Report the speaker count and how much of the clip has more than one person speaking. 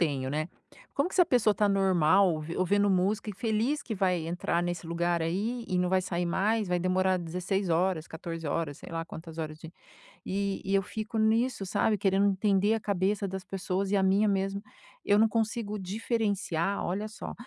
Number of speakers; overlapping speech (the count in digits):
1, no overlap